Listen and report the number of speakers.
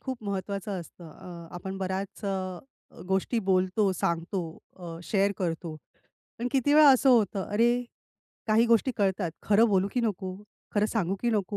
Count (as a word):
one